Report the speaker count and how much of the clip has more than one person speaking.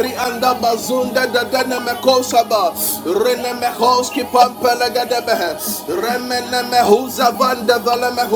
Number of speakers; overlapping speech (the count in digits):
1, no overlap